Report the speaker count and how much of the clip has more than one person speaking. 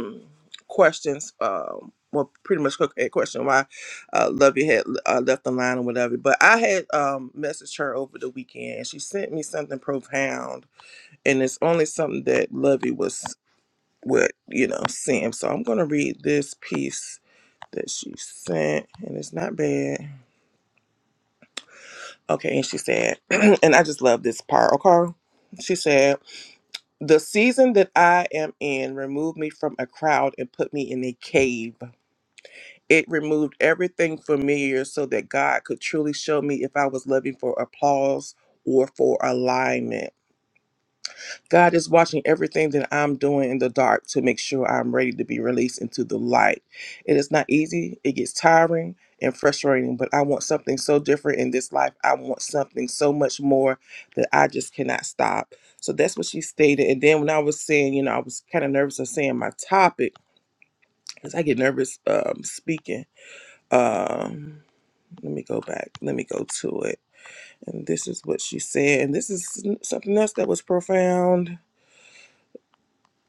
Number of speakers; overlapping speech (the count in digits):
1, no overlap